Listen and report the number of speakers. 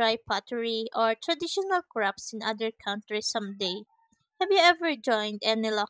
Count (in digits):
1